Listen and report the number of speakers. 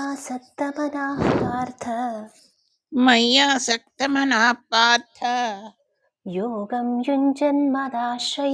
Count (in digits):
2